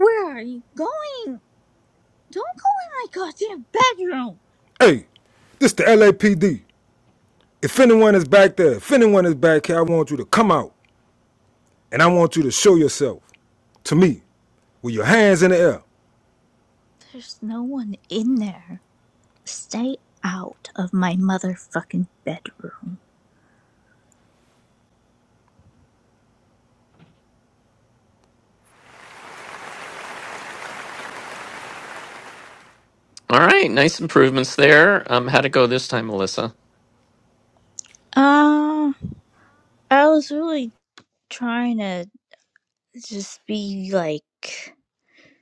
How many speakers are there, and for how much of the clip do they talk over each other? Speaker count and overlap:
3, no overlap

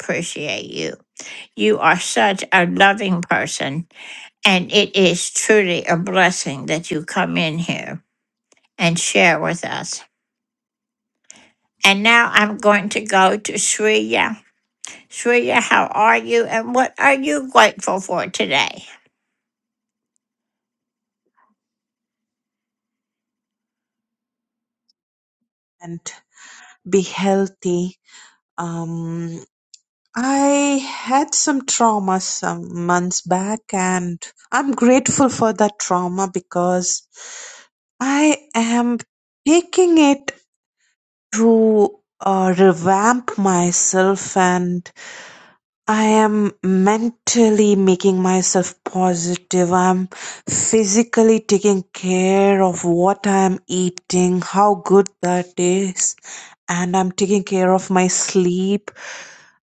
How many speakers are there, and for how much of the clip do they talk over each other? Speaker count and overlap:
2, no overlap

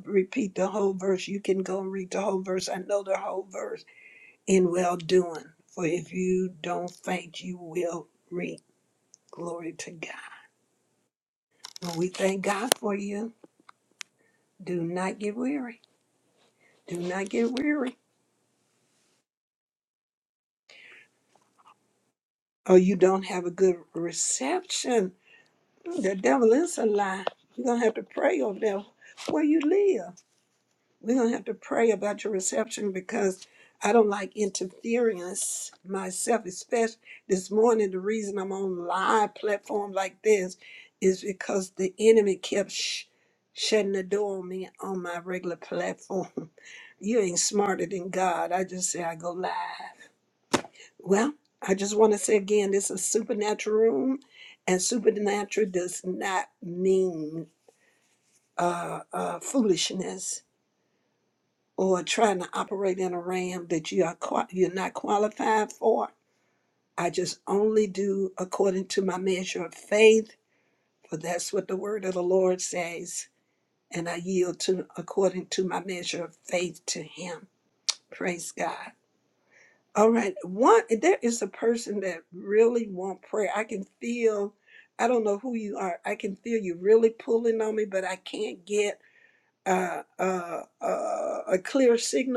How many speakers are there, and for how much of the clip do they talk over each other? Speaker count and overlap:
1, no overlap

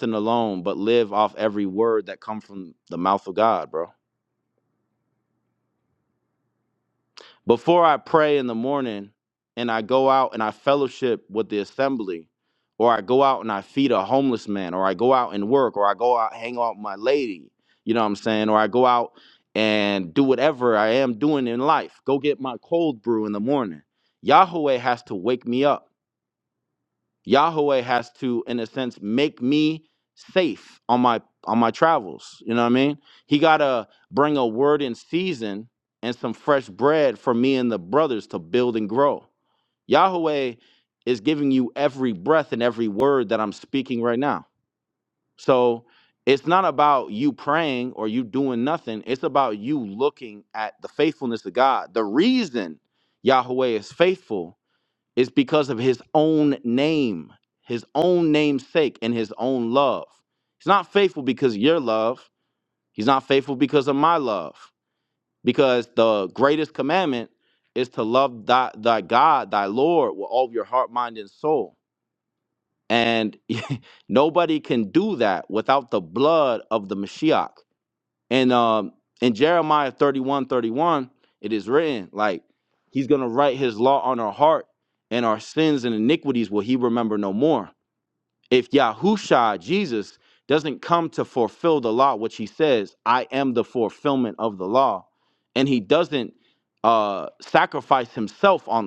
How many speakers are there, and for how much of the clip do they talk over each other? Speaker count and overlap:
1, no overlap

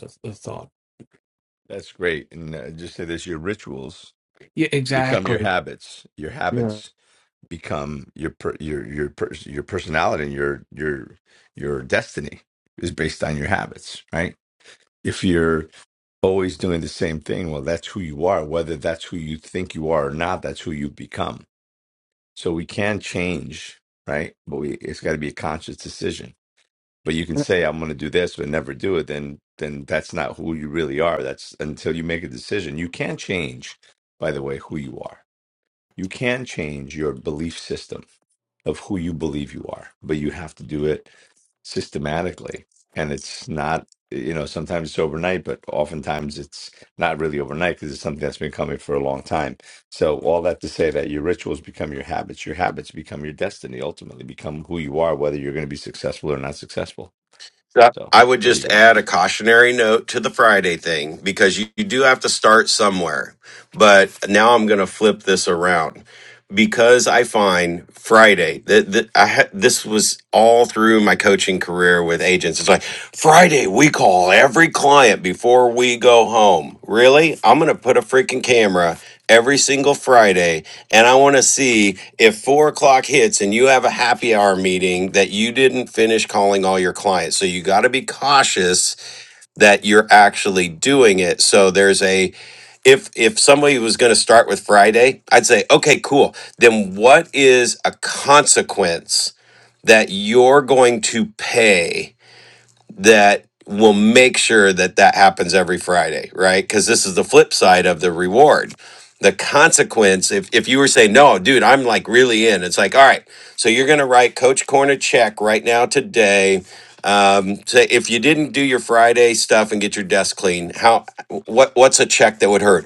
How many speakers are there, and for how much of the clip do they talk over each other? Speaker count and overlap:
3, about 1%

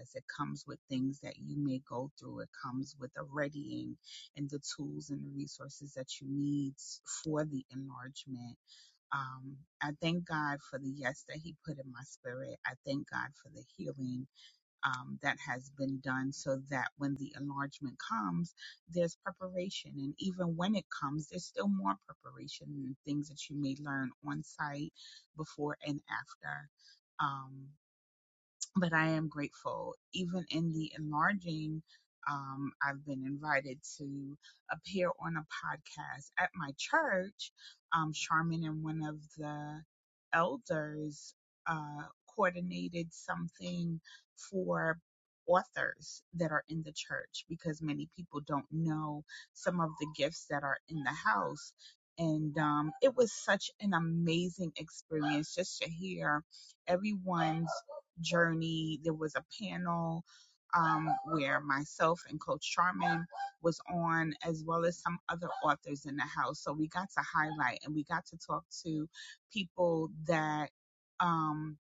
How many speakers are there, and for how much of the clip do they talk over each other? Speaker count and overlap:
1, no overlap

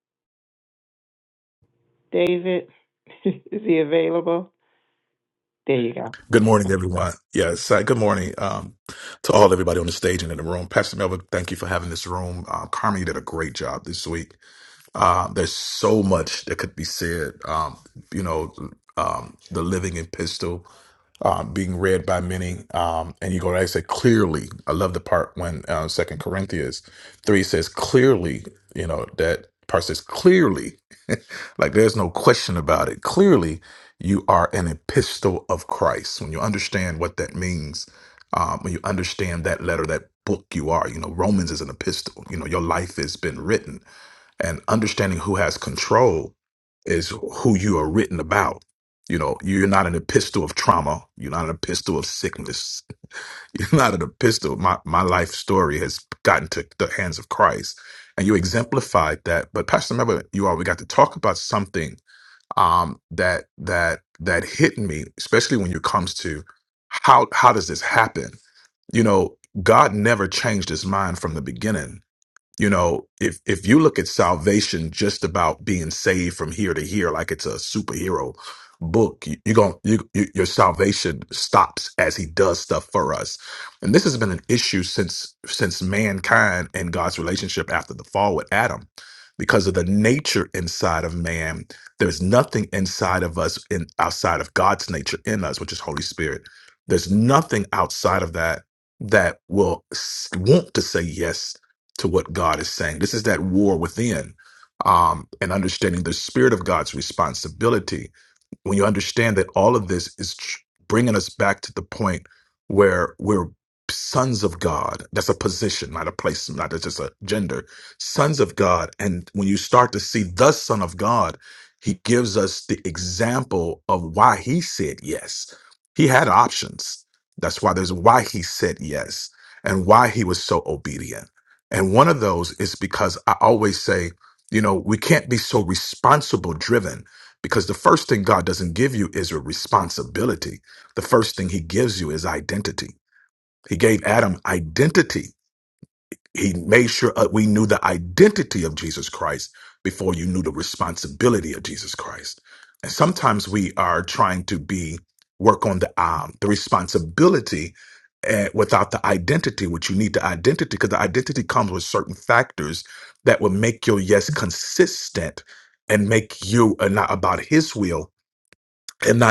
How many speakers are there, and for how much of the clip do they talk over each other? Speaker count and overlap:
2, under 1%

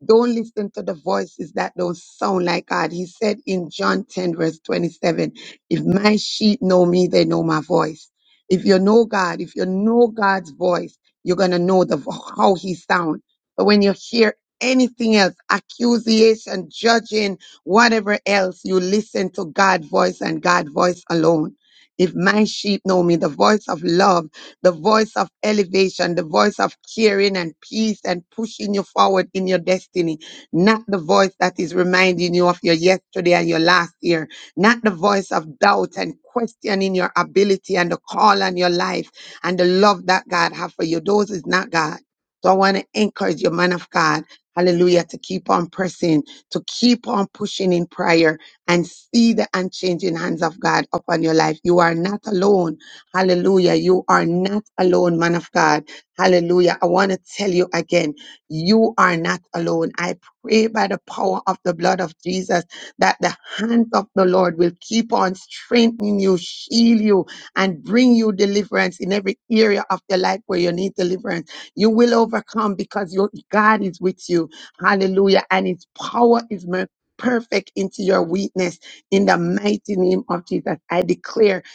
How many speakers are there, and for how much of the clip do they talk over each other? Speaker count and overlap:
1, no overlap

